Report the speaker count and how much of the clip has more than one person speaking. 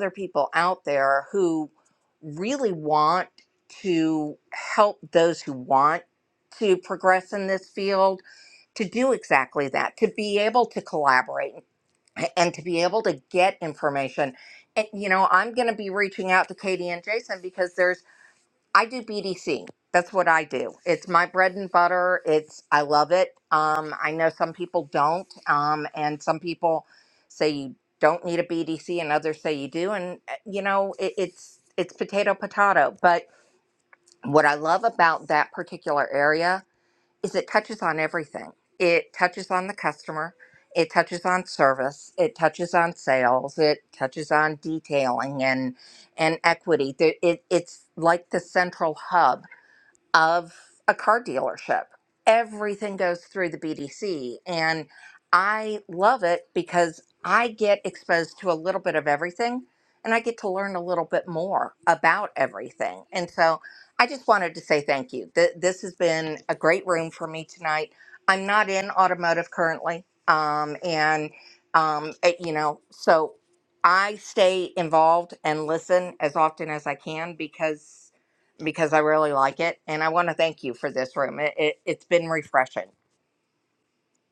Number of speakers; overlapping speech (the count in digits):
1, no overlap